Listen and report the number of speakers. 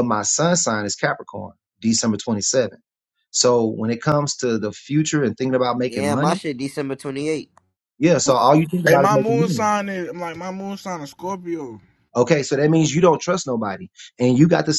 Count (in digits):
3